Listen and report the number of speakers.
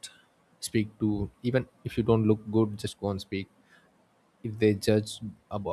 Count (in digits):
1